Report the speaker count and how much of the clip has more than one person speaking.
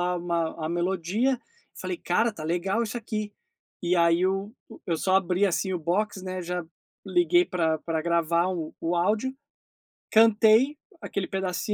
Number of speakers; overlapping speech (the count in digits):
1, no overlap